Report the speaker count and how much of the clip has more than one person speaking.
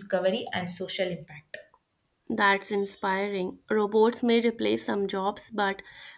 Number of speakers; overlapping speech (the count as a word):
two, no overlap